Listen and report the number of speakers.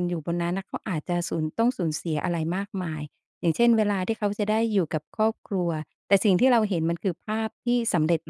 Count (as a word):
one